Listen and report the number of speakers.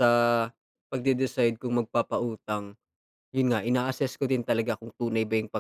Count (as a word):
one